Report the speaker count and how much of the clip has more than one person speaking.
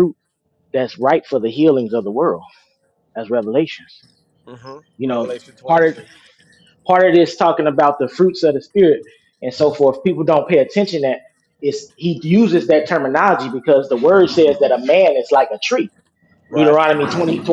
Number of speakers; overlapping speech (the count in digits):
2, about 5%